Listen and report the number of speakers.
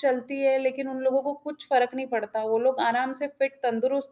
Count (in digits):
1